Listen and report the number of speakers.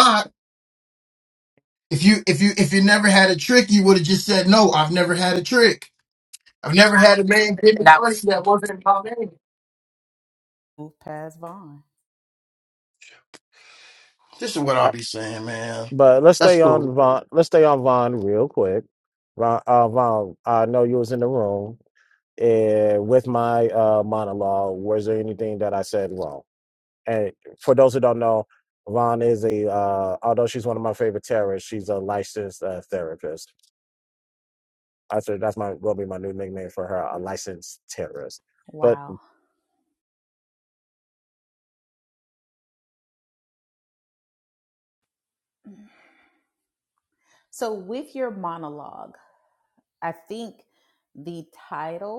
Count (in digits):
3